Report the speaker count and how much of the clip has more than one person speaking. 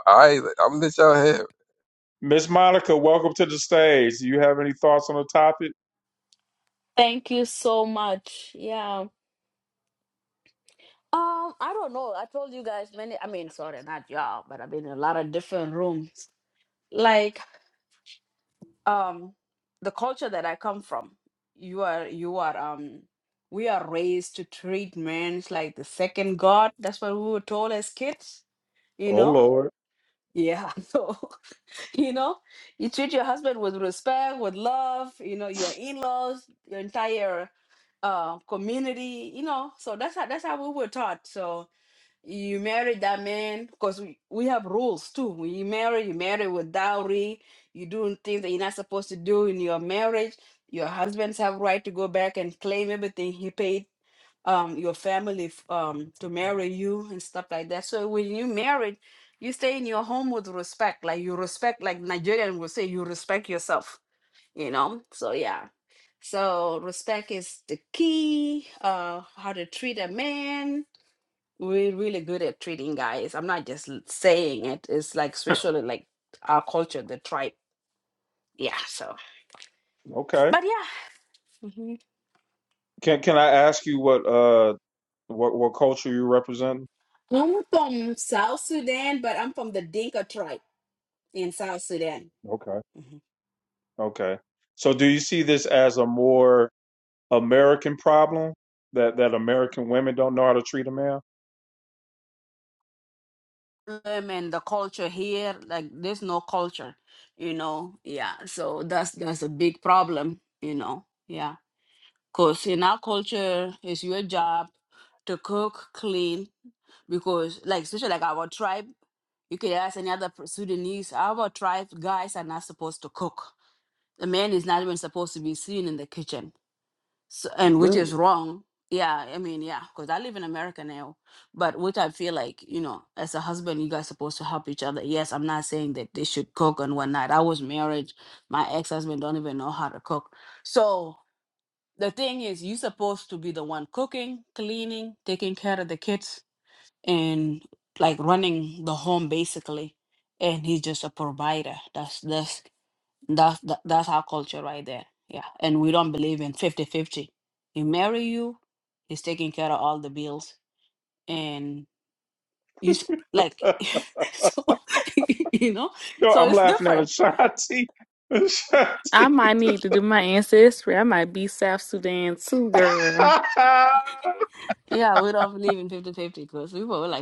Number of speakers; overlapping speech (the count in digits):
4, about 1%